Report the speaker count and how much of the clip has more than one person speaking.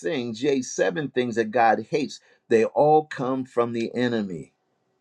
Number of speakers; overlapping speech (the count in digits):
1, no overlap